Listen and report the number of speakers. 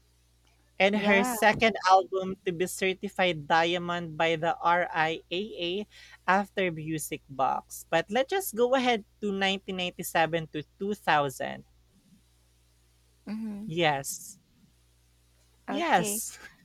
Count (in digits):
2